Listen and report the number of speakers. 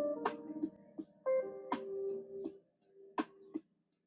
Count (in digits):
0